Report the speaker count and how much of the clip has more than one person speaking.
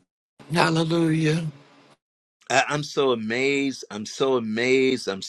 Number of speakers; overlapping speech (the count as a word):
two, no overlap